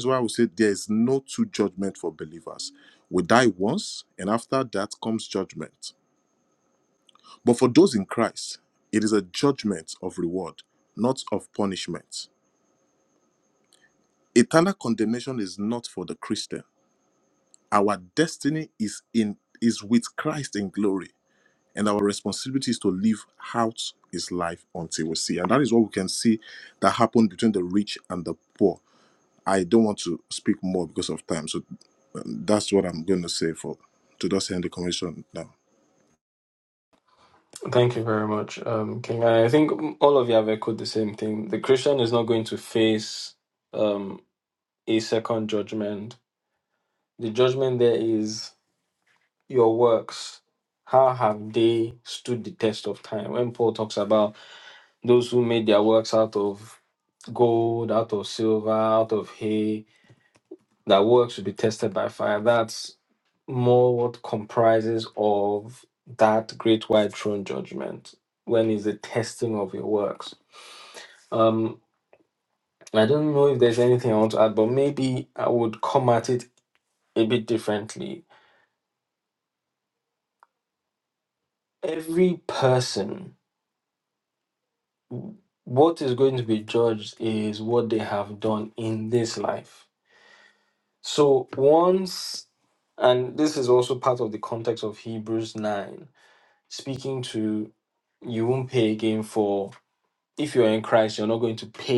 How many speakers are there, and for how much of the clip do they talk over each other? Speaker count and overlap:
two, no overlap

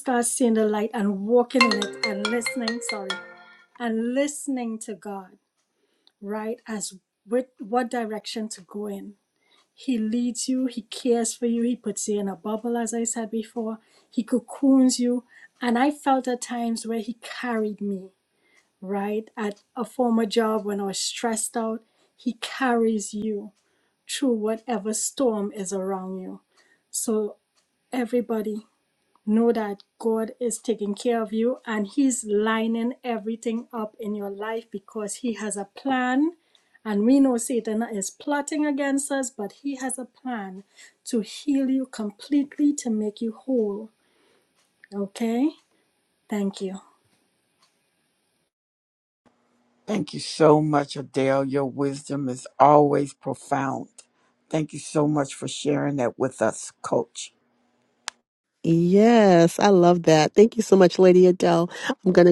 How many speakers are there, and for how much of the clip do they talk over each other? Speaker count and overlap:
three, no overlap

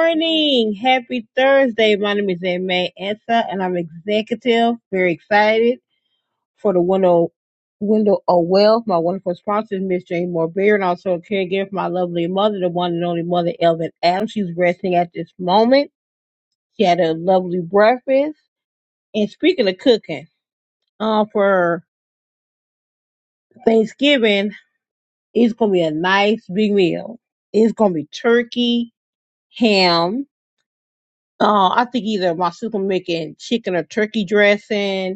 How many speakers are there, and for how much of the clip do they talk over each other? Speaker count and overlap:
one, no overlap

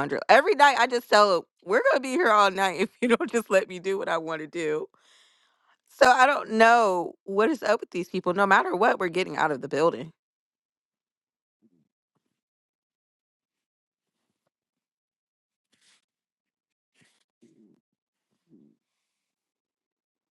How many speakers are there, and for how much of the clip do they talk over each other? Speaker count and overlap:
one, no overlap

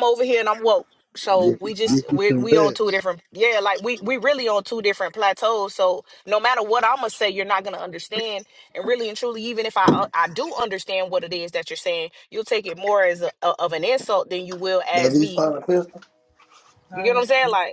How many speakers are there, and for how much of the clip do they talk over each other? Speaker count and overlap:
two, about 12%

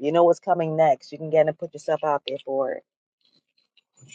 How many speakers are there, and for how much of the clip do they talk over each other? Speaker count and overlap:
one, no overlap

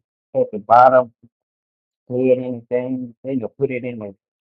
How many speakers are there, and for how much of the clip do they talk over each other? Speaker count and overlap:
one, no overlap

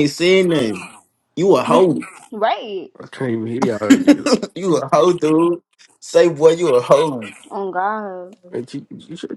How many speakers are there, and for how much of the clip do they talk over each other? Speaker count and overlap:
three, no overlap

